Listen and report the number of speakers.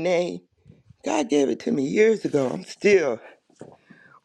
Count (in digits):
1